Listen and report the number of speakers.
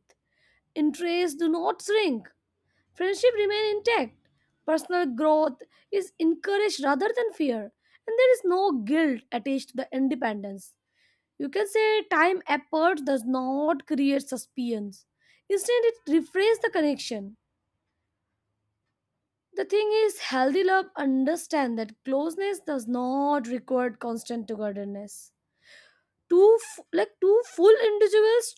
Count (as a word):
one